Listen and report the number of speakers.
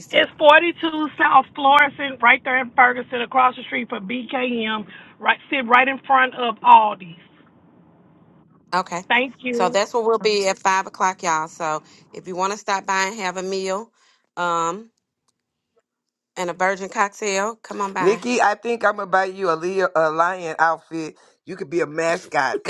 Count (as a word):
three